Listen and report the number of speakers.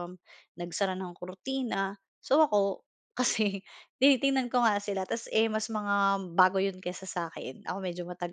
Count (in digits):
1